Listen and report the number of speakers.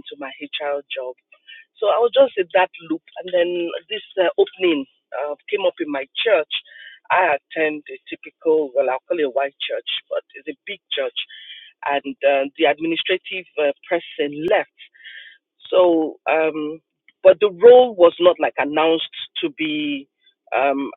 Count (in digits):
1